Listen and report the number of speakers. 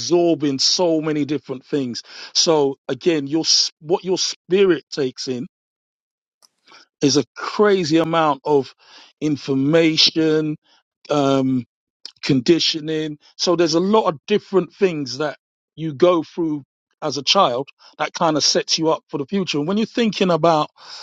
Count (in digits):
1